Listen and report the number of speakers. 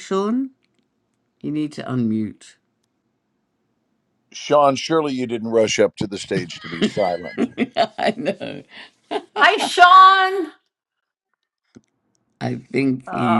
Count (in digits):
3